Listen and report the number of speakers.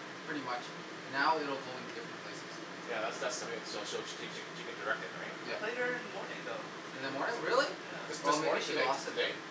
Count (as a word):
three